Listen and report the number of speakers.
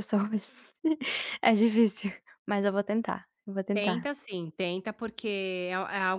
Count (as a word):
two